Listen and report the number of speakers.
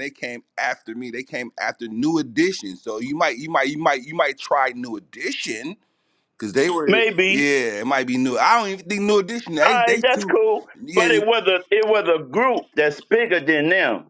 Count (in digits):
2